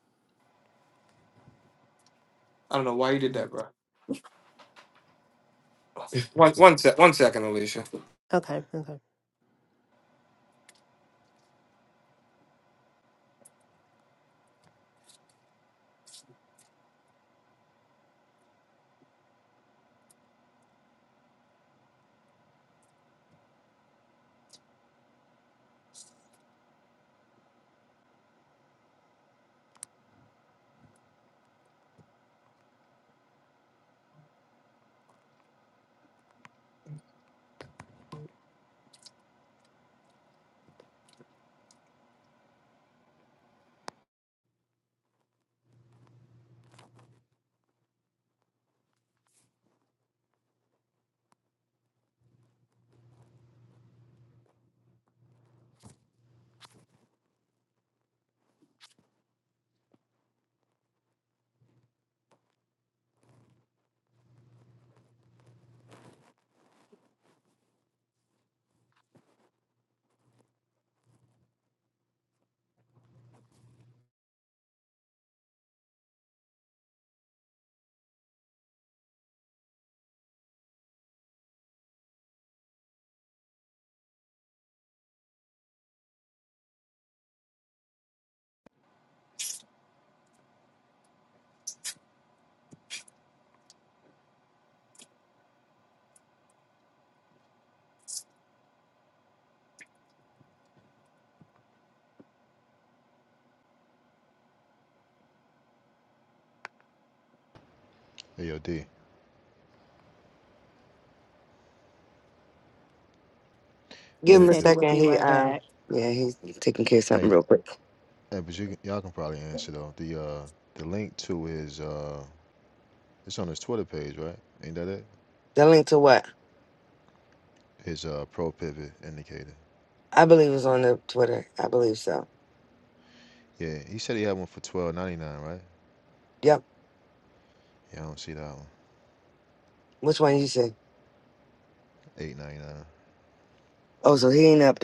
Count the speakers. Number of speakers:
4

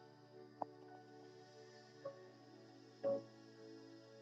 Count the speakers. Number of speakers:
0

